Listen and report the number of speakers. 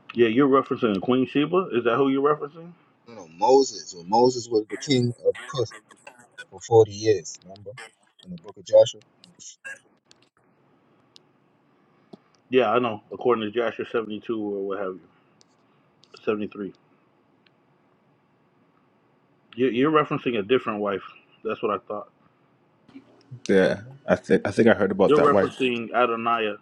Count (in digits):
3